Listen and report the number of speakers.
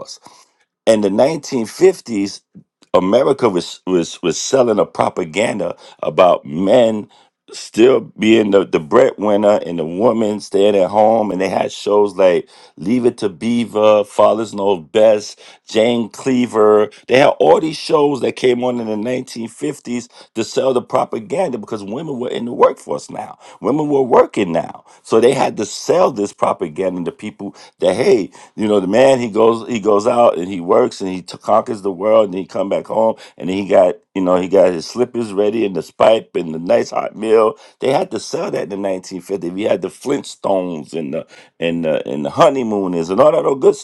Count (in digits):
1